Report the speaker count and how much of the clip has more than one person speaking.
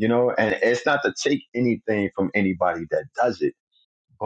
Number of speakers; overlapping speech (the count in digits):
1, no overlap